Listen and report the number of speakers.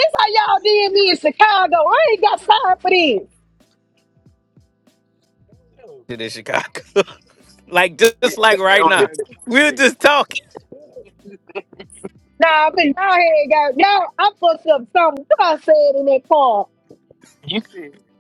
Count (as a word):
three